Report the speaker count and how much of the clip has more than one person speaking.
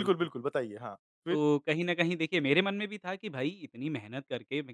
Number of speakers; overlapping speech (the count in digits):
2, about 8%